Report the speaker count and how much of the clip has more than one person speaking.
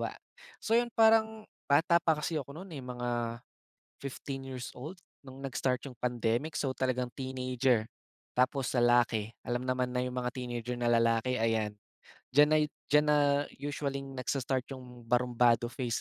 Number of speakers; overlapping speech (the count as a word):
one, no overlap